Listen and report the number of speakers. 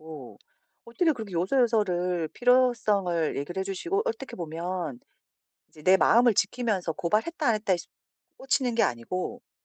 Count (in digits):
1